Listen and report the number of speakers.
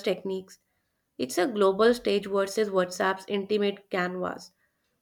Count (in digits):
1